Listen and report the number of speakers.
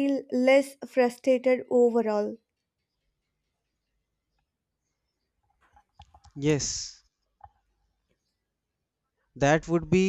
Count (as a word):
two